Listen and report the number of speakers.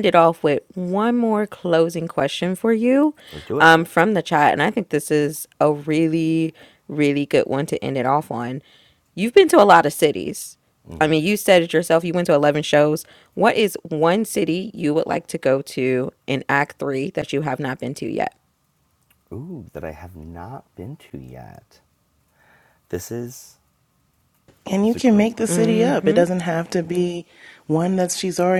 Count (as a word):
three